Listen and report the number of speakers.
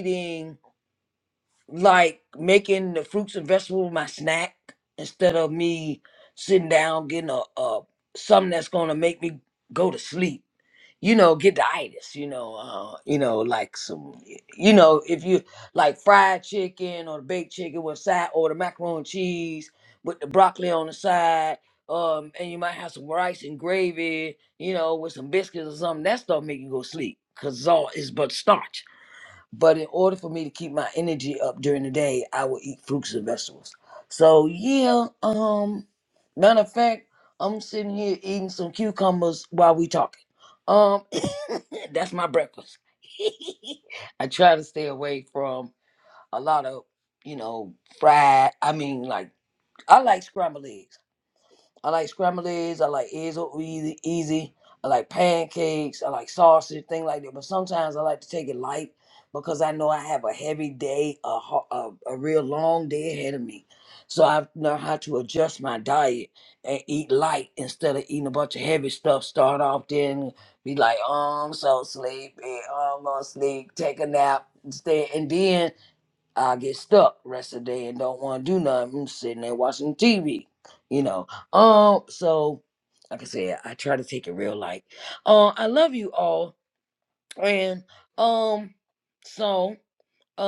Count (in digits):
1